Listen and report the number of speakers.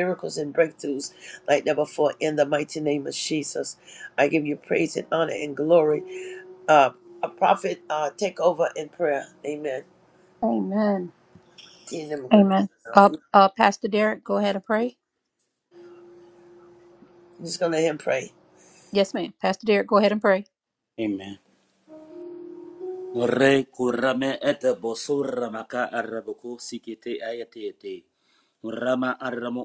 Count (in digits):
3